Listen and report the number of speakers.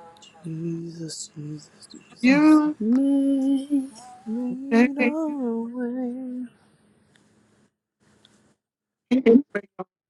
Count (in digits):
3